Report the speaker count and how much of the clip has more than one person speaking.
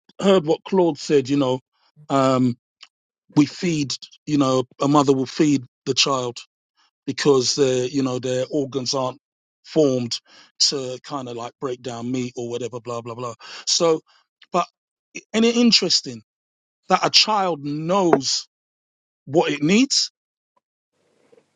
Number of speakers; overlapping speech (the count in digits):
1, no overlap